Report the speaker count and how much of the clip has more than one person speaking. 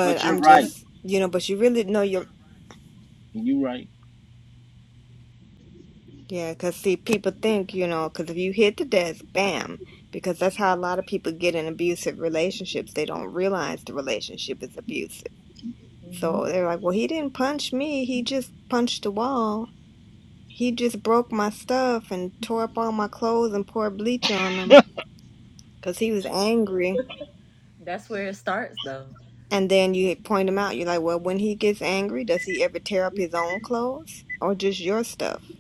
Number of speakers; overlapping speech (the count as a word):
three, about 3%